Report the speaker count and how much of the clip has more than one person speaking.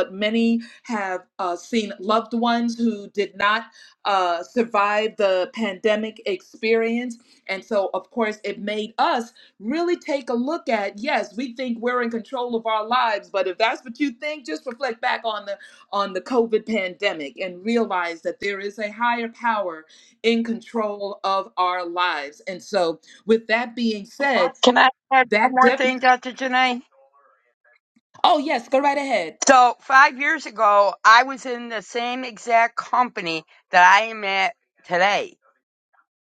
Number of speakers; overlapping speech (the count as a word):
two, about 2%